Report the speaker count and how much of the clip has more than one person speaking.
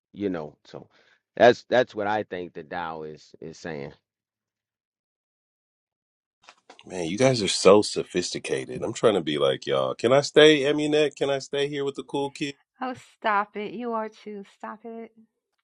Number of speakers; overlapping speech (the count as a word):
three, no overlap